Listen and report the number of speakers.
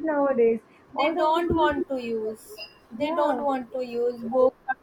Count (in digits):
2